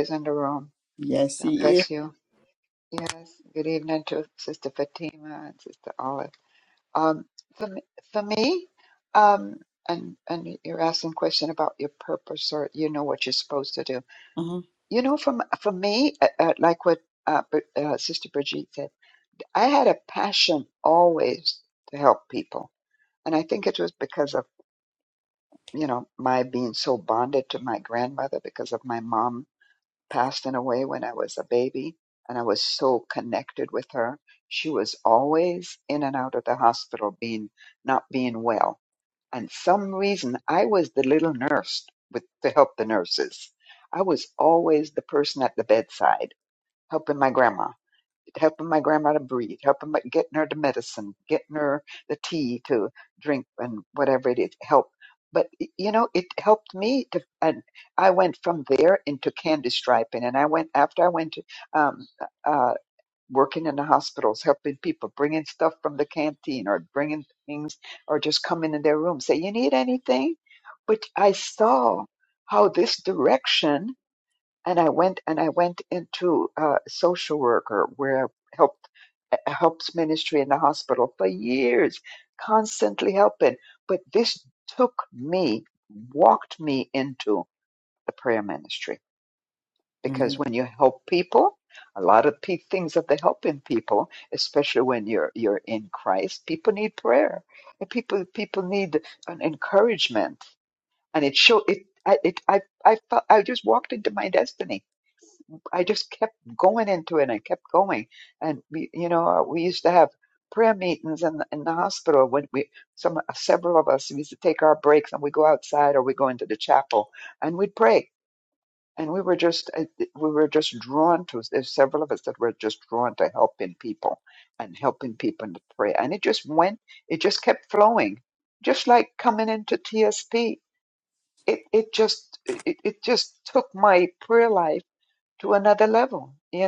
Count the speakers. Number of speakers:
2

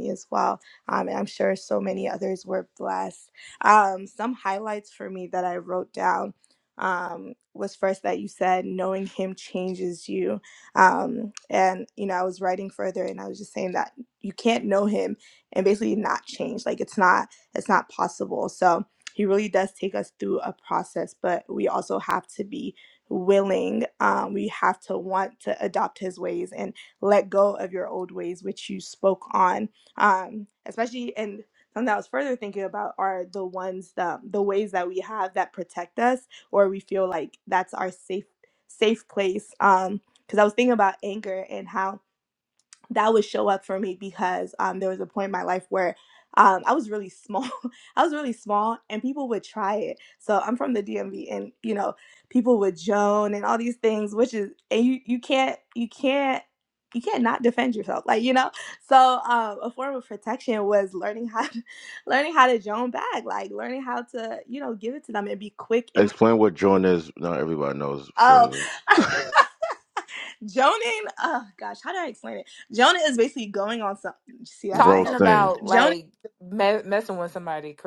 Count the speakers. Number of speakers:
3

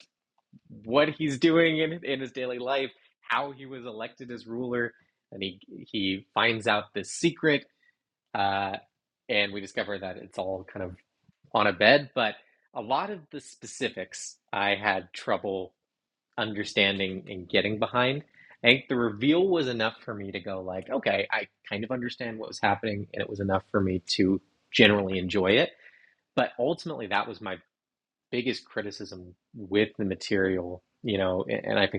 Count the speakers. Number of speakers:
1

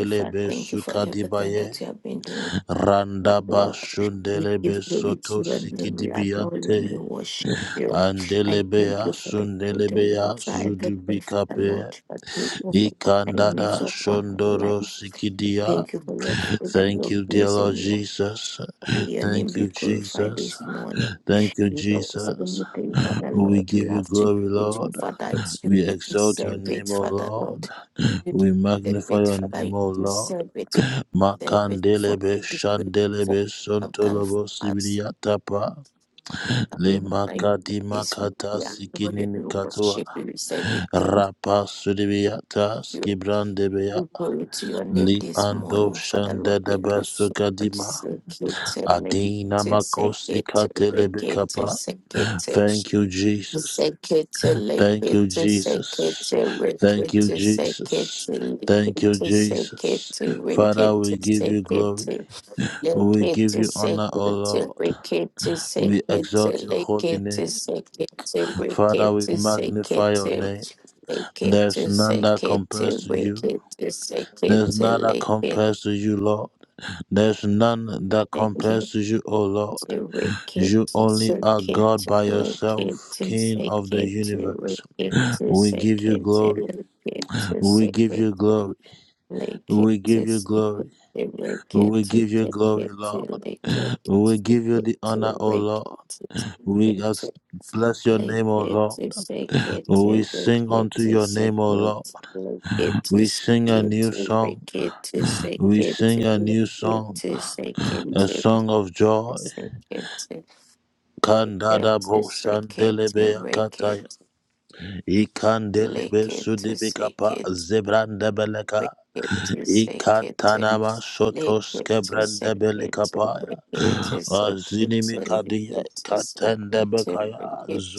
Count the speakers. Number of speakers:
2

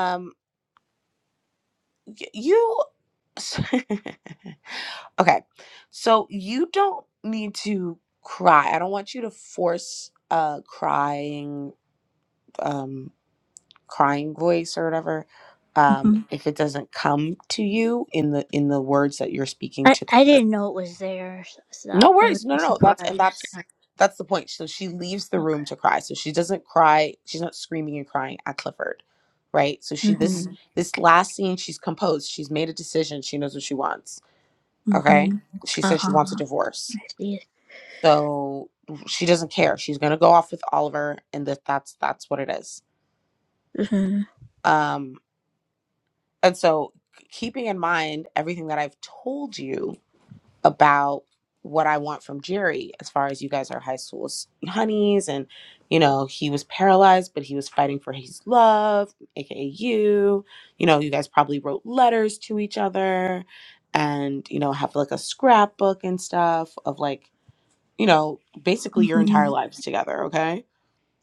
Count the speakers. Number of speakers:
2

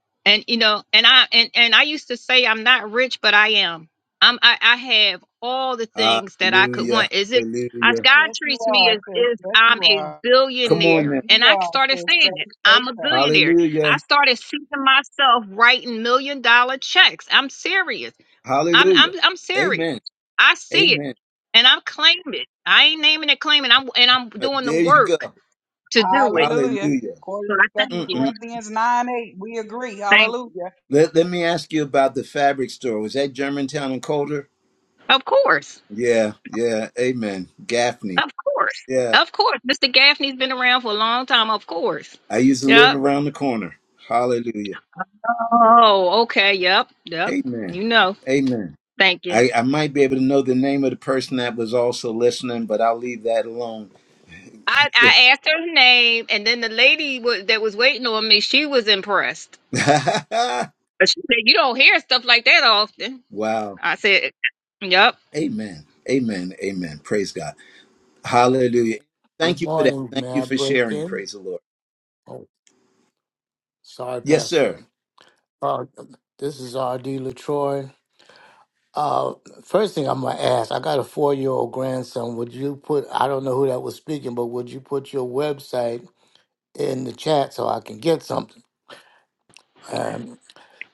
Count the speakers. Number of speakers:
4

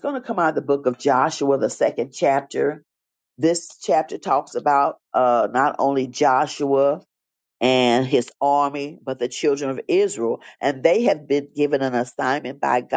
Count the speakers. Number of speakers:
1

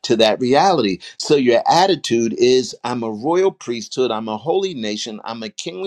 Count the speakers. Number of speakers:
1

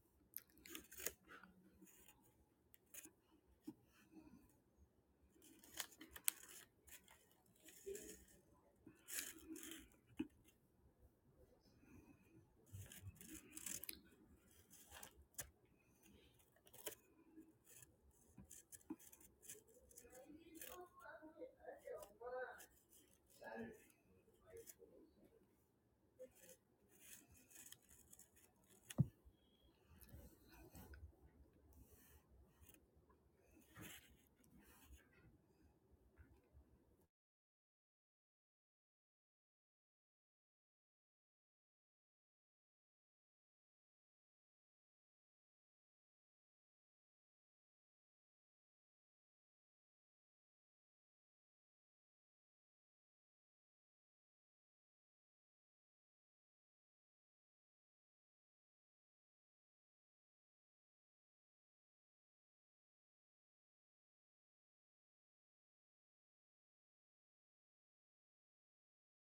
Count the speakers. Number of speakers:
0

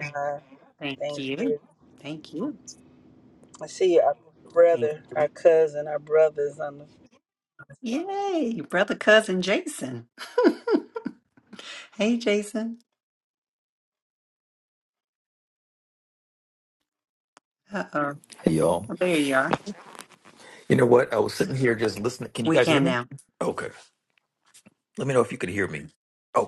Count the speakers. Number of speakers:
3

